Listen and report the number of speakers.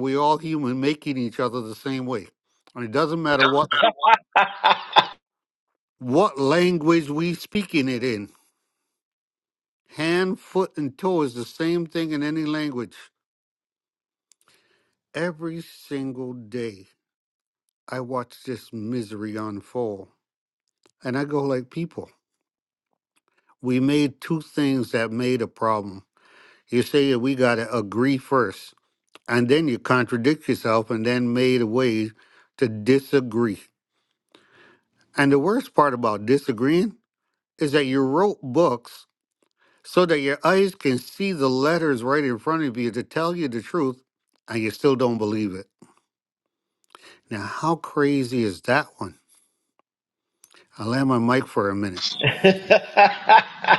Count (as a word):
two